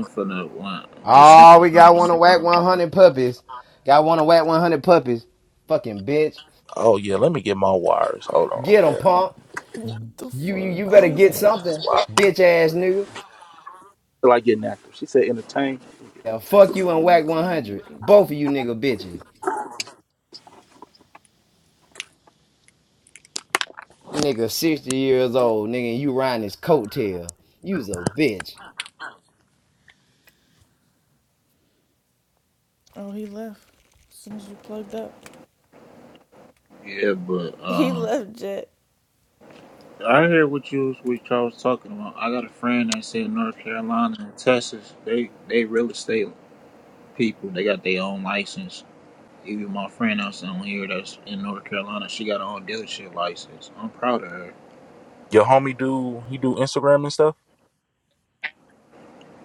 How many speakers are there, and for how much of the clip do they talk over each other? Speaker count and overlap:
4, about 8%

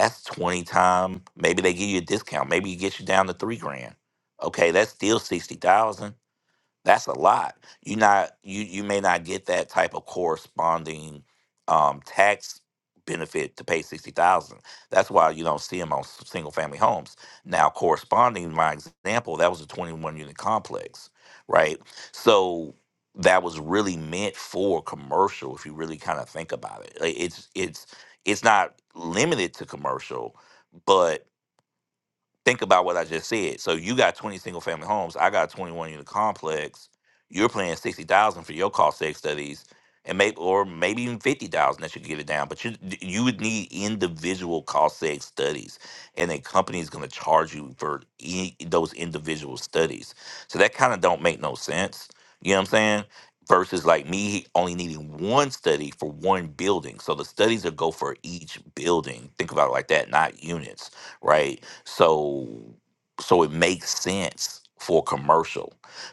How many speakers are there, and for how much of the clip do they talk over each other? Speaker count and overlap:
1, no overlap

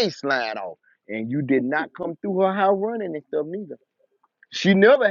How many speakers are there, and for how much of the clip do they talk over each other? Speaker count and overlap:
1, no overlap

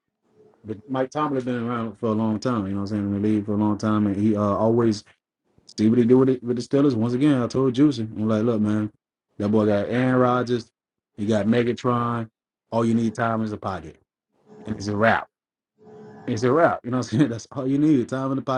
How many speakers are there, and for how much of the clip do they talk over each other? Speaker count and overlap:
1, no overlap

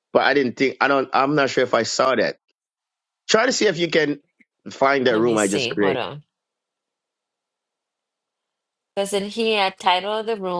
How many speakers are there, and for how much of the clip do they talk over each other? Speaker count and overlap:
2, about 8%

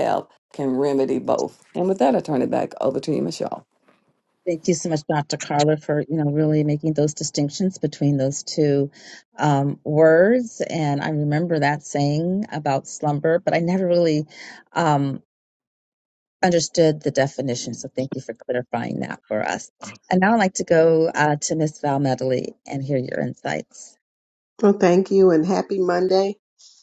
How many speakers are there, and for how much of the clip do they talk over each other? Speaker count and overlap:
3, no overlap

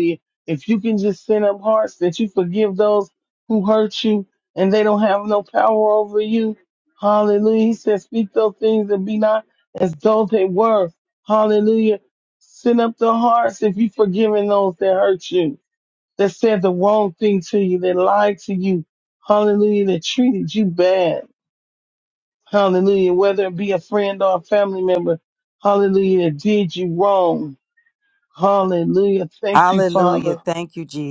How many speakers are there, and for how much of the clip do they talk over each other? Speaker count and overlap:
2, about 3%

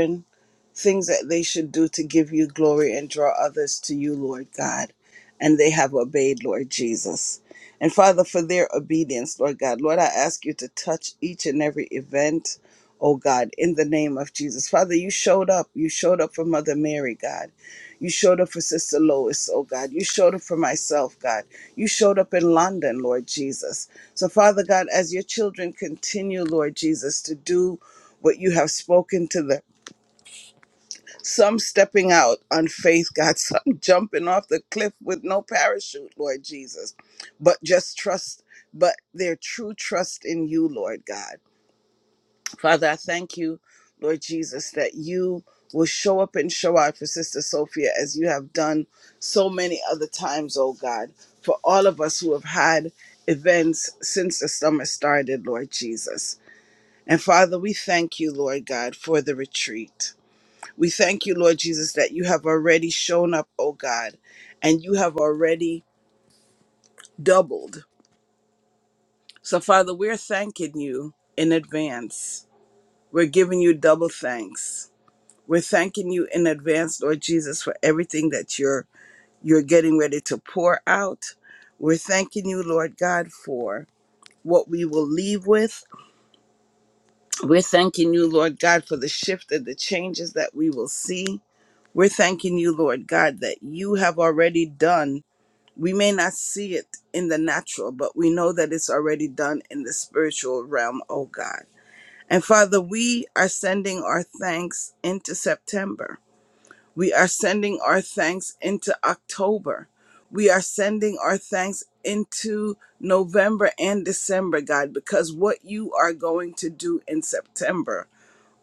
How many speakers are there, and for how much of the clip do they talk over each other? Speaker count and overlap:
1, no overlap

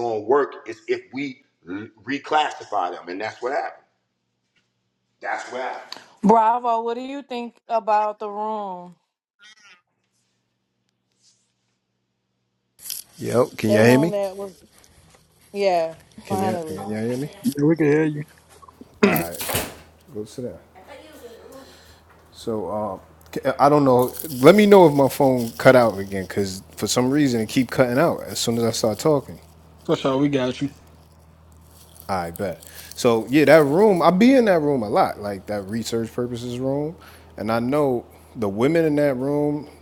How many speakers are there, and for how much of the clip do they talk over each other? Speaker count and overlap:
4, about 2%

